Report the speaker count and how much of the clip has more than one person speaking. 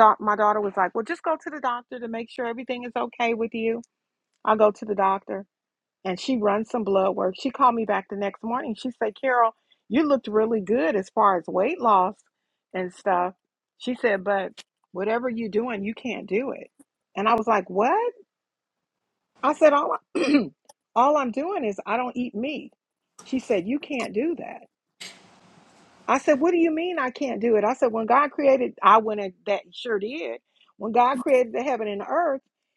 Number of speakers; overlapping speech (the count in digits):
1, no overlap